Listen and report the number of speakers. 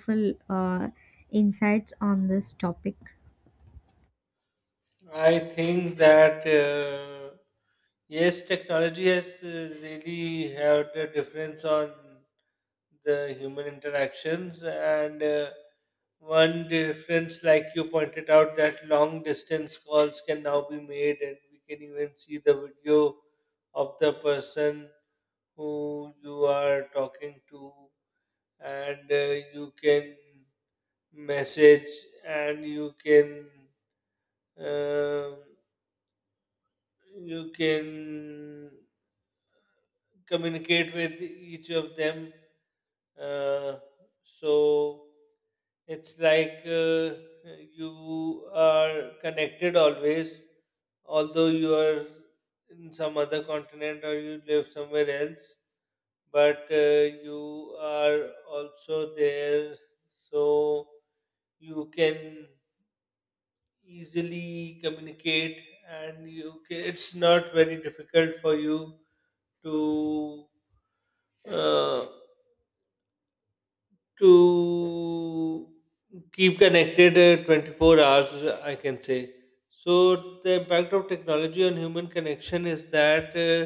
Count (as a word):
two